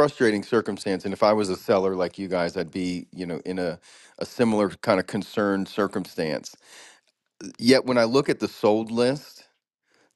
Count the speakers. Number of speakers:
1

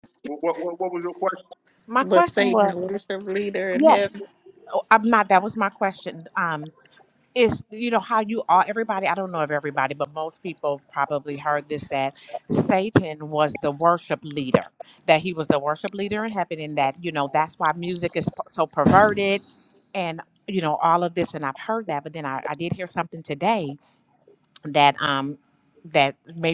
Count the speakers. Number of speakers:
3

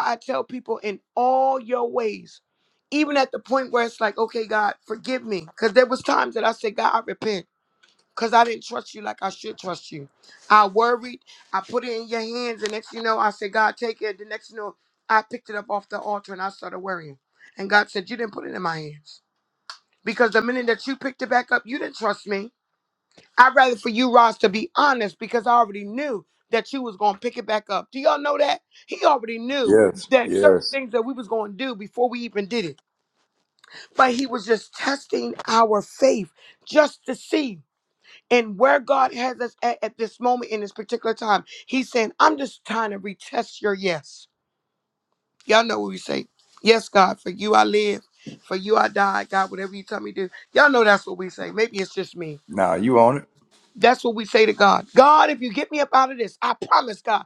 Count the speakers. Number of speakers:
2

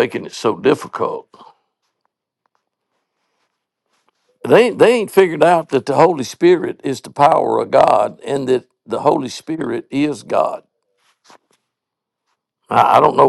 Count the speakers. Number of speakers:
1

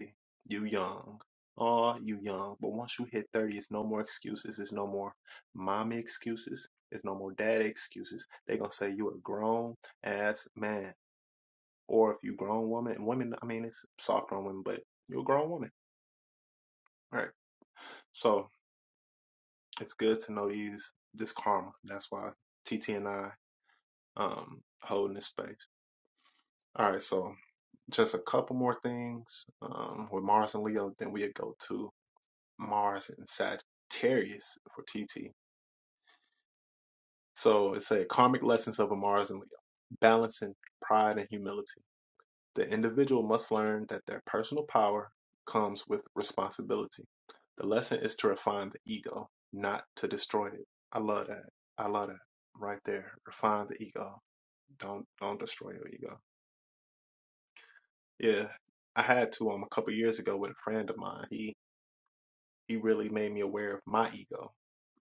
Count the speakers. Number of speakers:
1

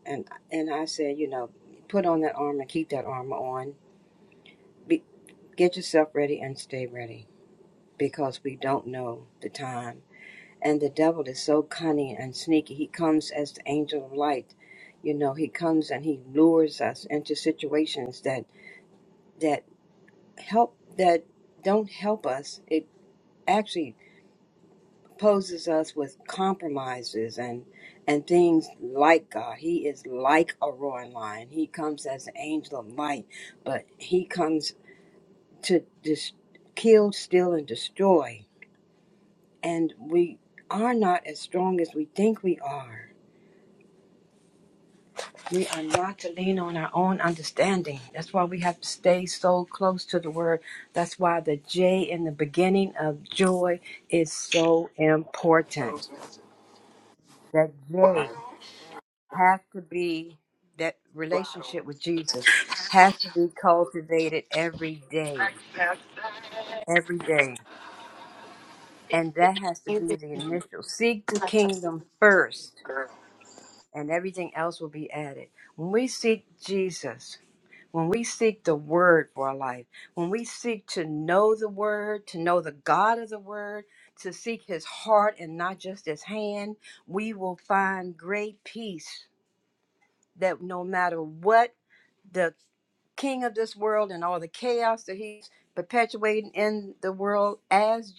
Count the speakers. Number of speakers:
1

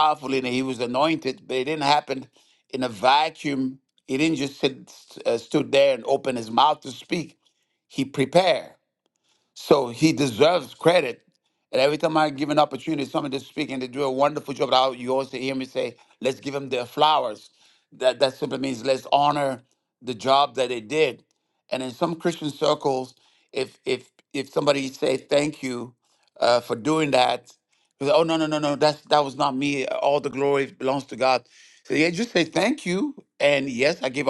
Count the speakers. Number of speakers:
1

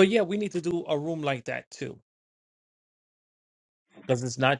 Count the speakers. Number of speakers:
1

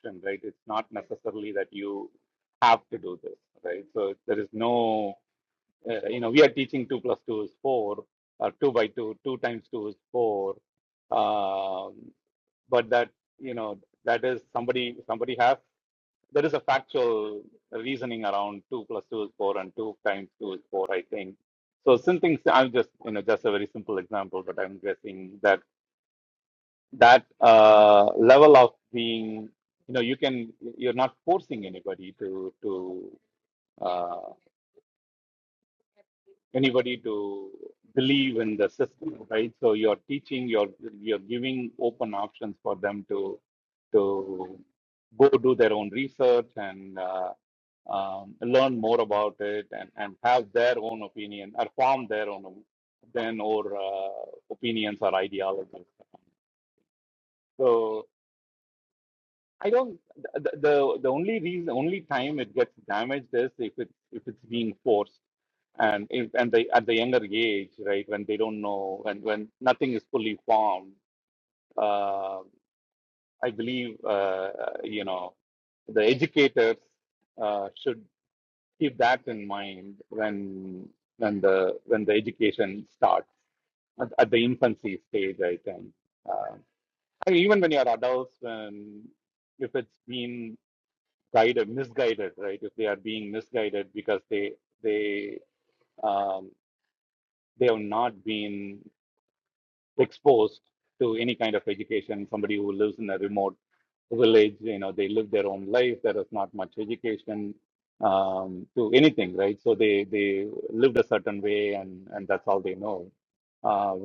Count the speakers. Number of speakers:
1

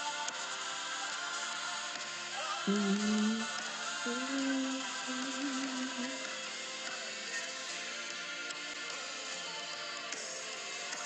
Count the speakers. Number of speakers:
0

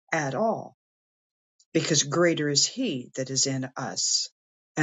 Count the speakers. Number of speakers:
1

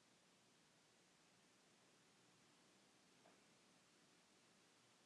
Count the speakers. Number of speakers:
0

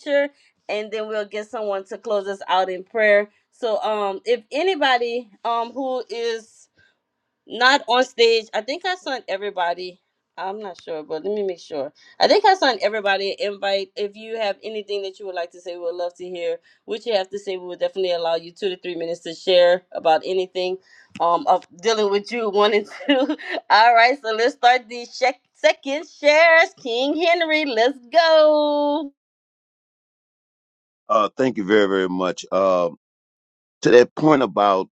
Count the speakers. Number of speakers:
2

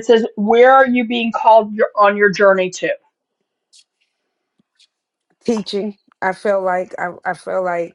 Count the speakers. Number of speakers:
2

